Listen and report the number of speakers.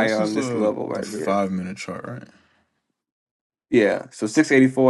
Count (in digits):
2